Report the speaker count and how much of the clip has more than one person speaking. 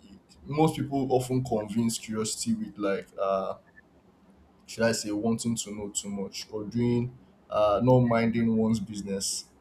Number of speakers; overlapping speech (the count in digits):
1, no overlap